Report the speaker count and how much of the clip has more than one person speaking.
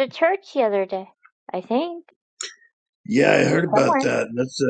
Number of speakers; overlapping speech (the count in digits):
2, about 9%